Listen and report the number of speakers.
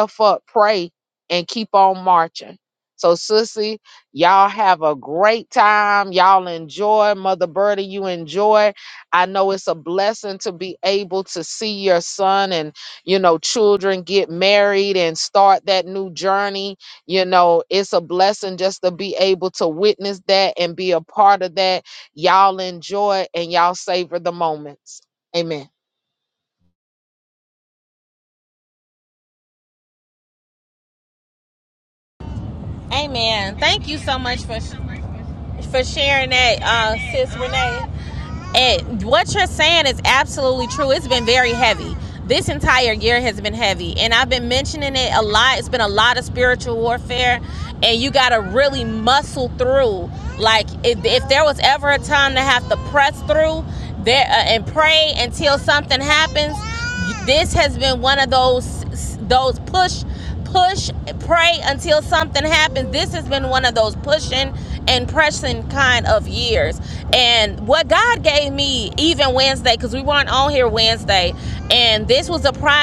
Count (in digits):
2